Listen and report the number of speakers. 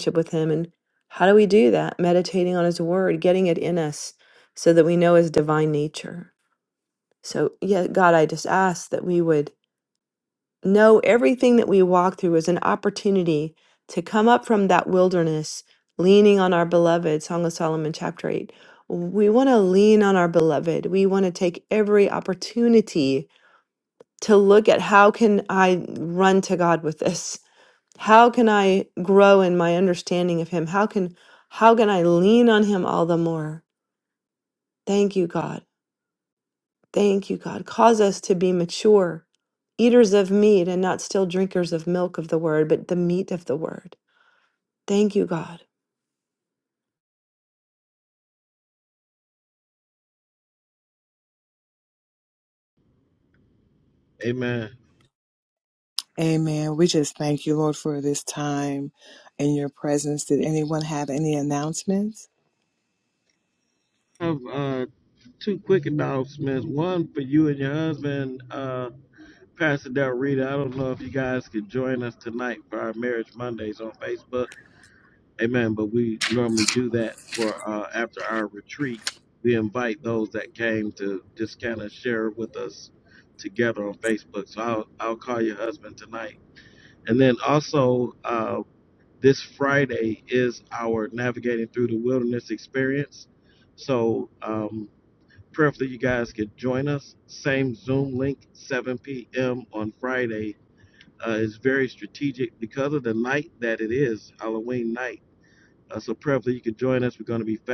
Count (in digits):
3